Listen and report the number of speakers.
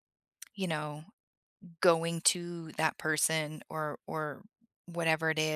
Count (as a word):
one